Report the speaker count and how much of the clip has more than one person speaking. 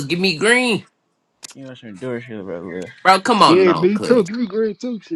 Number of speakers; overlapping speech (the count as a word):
three, about 16%